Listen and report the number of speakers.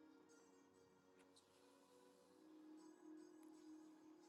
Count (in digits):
0